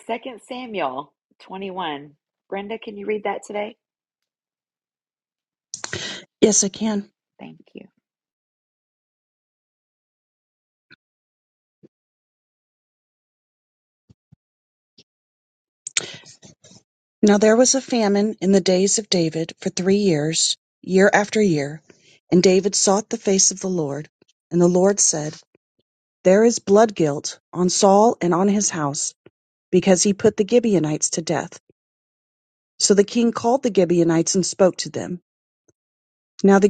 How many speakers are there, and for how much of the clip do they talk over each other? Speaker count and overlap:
2, no overlap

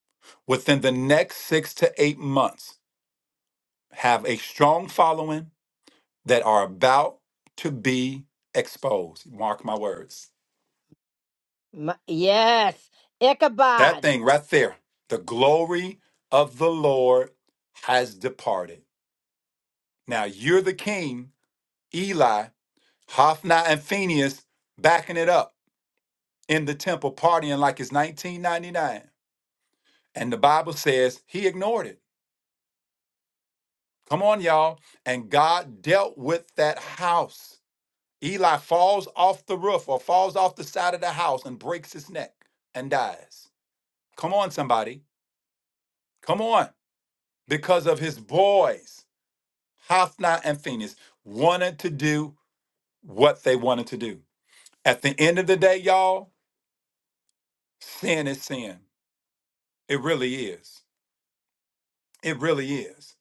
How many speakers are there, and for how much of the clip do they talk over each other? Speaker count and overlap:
2, under 1%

